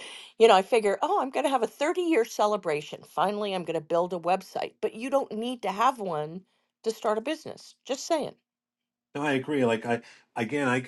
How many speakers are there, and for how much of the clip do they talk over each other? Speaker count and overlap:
two, no overlap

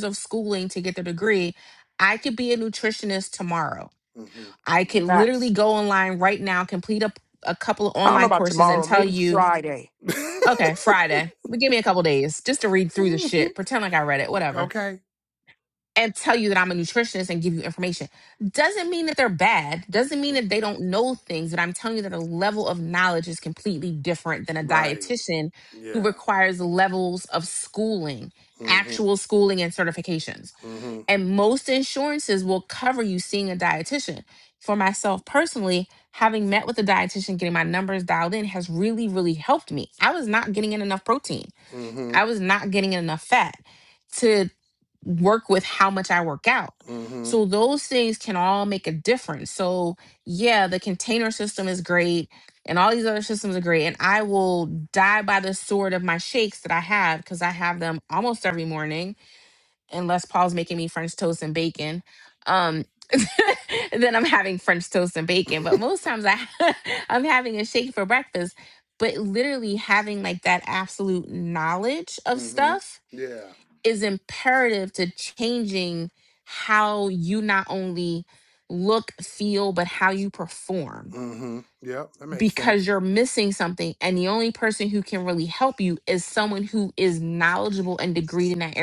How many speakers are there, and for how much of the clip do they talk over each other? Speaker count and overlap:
three, about 5%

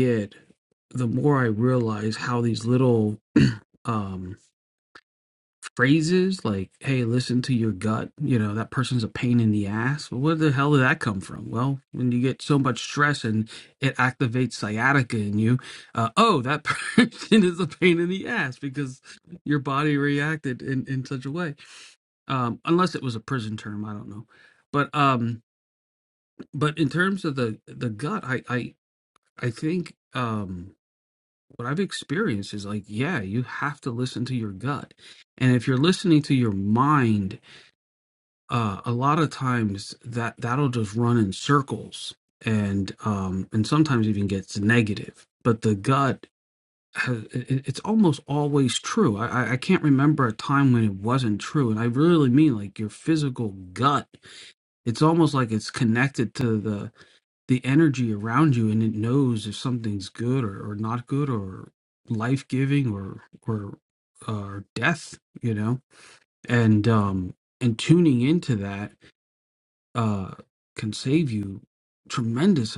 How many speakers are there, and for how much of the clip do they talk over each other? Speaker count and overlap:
one, no overlap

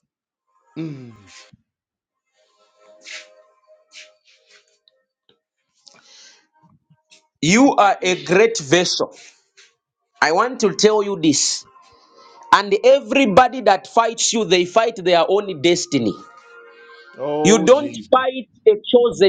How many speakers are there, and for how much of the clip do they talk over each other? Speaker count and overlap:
two, about 3%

